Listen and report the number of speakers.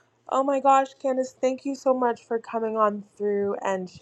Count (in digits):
1